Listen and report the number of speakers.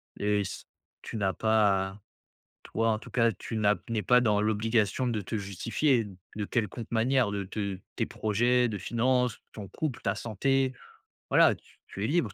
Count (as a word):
one